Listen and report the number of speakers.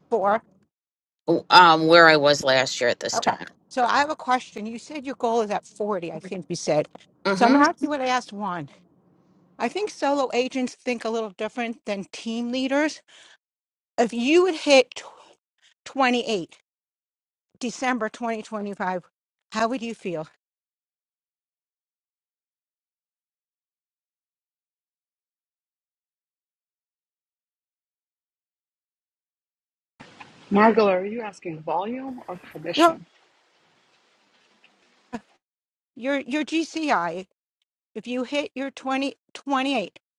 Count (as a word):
three